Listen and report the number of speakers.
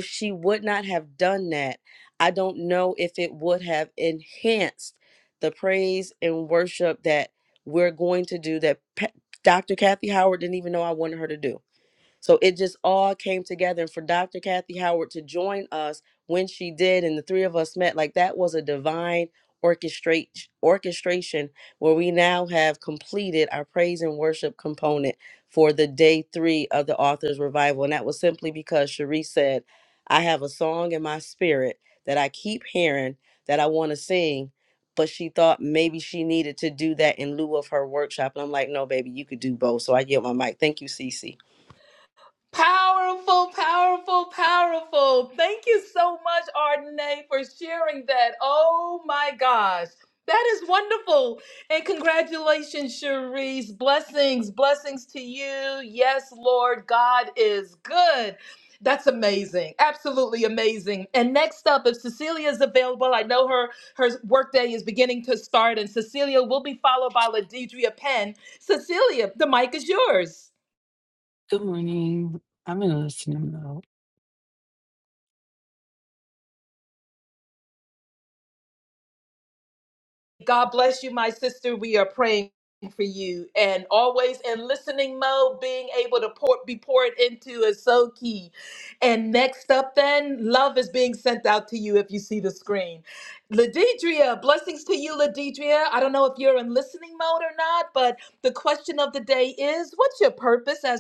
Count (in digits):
3